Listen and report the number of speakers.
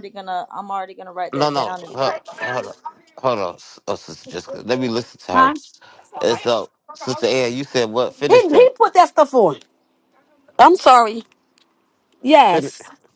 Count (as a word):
three